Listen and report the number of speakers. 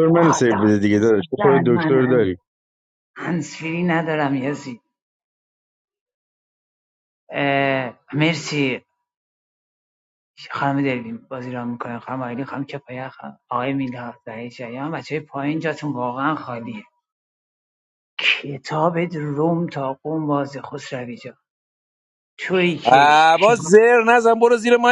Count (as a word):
three